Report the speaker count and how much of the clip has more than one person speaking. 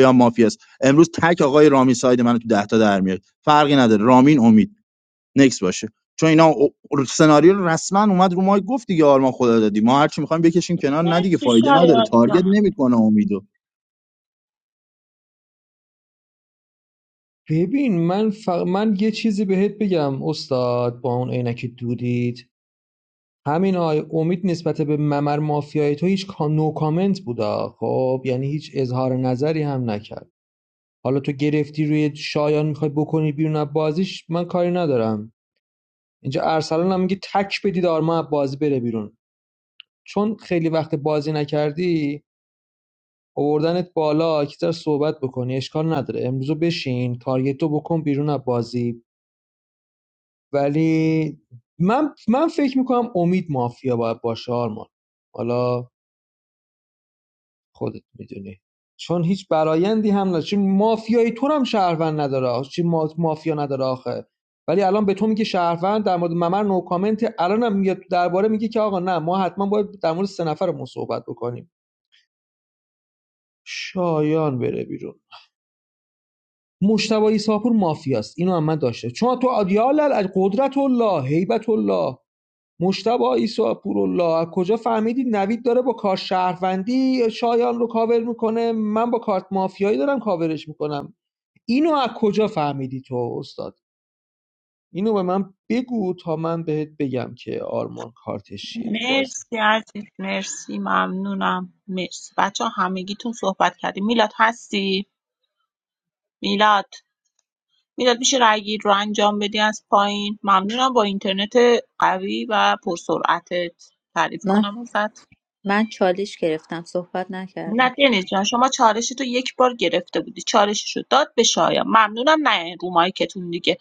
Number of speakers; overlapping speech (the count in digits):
4, about 2%